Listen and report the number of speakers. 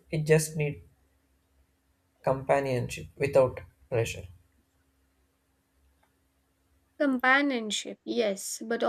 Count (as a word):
two